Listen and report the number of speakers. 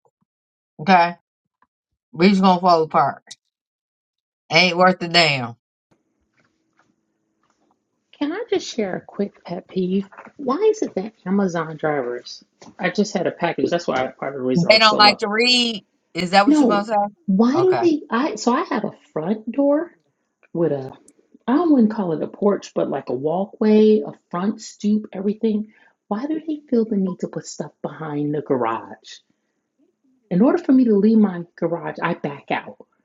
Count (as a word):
two